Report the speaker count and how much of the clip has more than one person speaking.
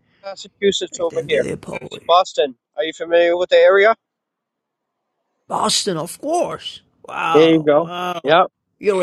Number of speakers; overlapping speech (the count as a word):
two, about 14%